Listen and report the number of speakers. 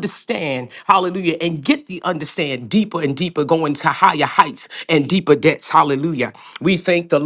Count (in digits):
1